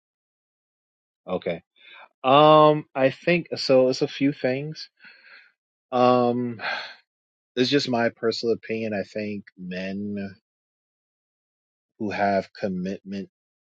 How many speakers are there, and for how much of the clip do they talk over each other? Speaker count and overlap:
1, no overlap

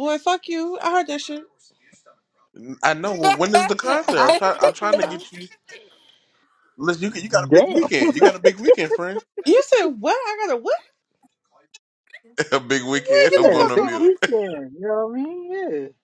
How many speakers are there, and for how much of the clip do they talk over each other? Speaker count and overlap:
3, about 15%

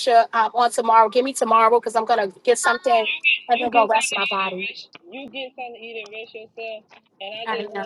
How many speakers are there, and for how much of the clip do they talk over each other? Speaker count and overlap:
2, about 16%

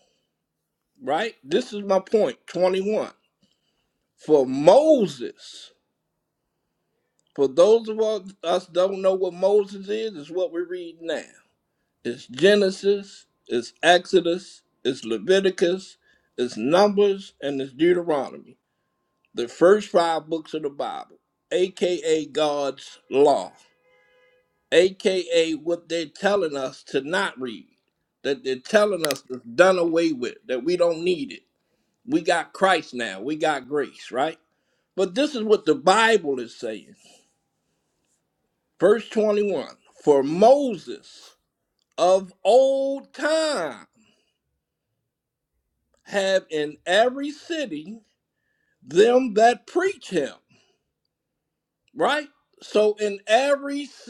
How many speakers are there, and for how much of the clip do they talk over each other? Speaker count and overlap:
1, no overlap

